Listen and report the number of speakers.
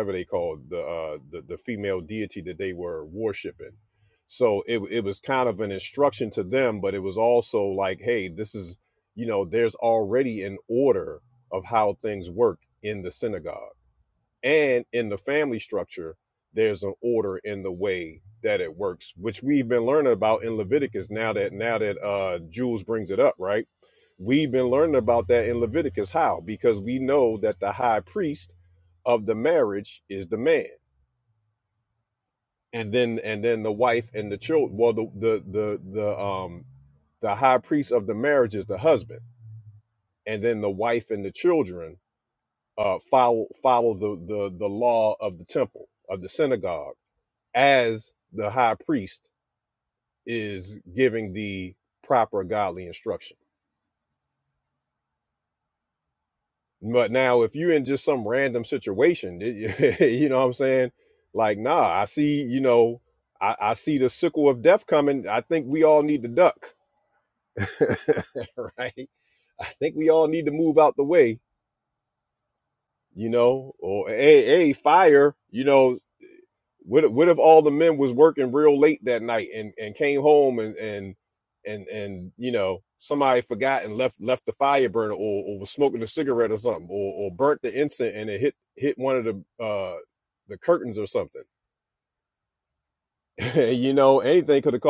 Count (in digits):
1